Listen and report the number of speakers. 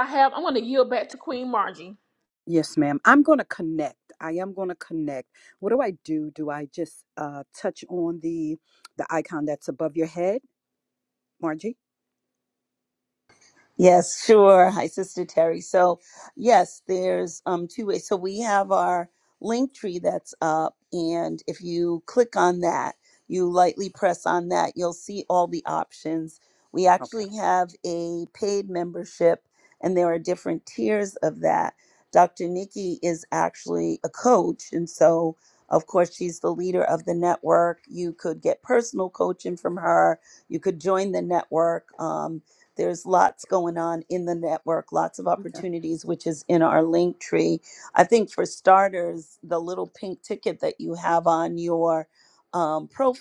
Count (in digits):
3